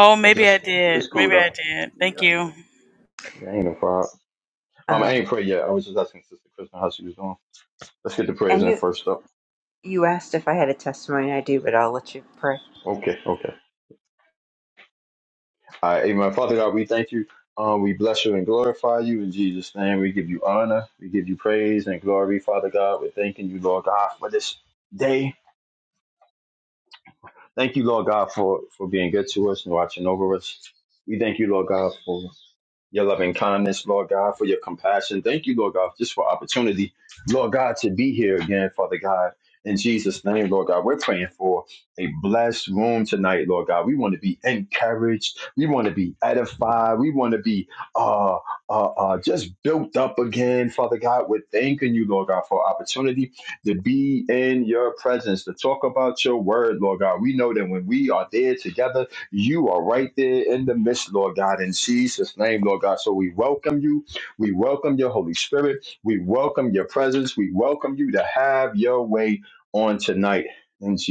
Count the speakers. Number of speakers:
3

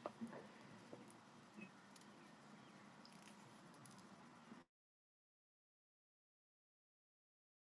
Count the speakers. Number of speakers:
0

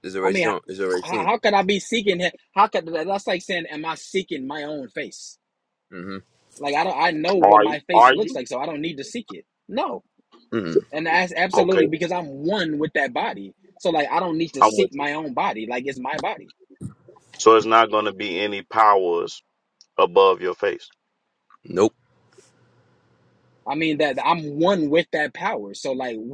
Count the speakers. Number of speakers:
3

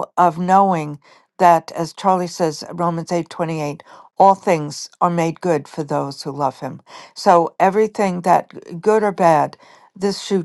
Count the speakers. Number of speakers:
1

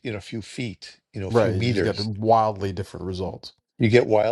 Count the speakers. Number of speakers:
2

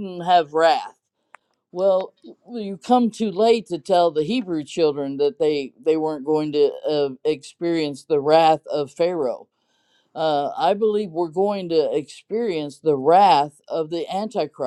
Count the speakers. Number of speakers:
1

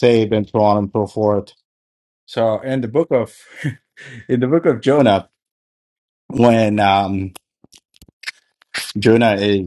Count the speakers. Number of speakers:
1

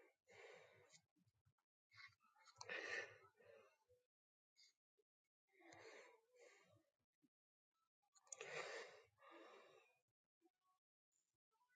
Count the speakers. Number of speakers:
0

